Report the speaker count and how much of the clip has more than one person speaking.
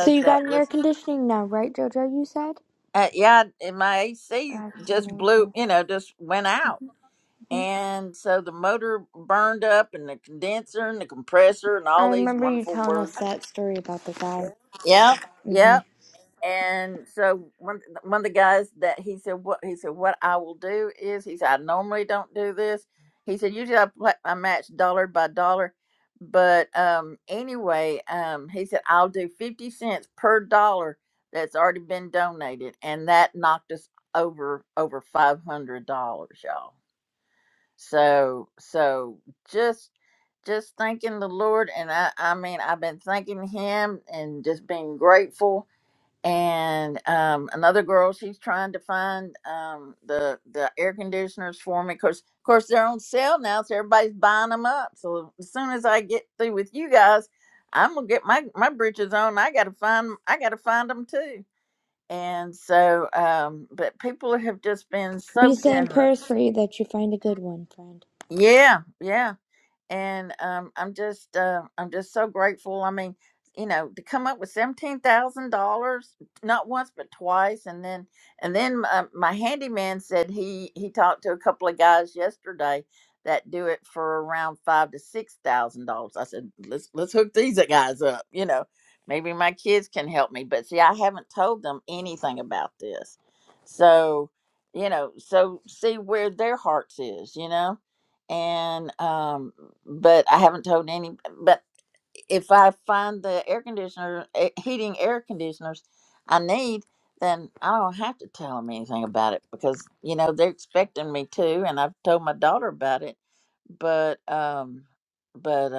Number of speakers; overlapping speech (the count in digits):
2, about 4%